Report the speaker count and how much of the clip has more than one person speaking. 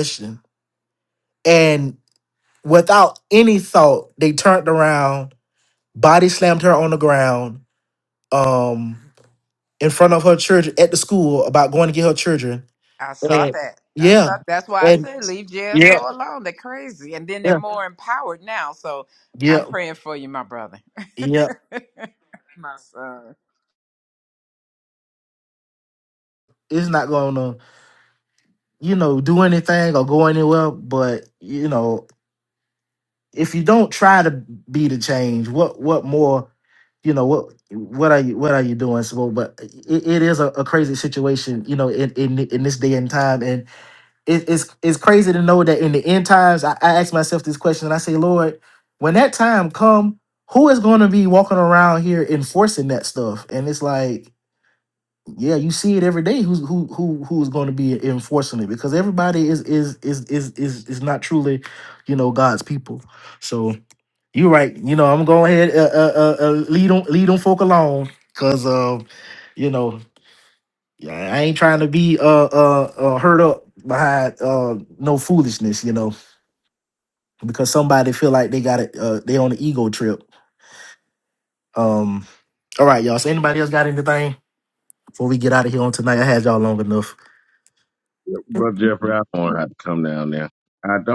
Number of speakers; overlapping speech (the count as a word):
three, about 2%